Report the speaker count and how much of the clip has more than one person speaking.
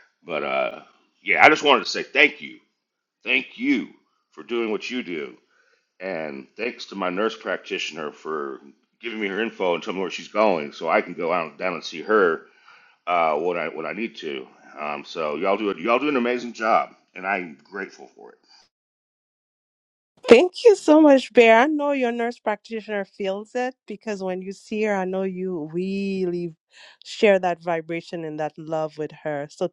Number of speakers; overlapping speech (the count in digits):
2, no overlap